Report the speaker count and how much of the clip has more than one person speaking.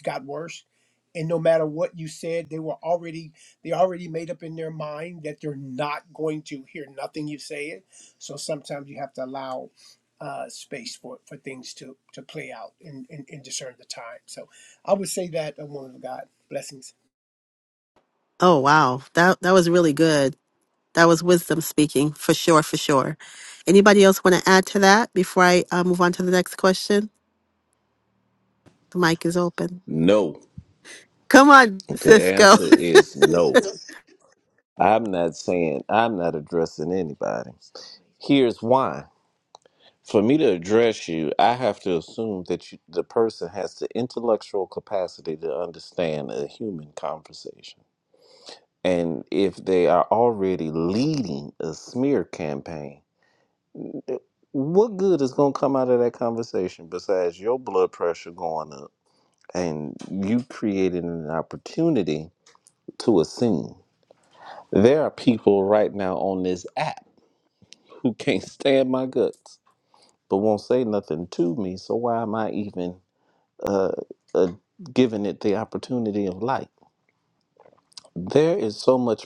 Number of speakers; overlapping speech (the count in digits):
3, about 1%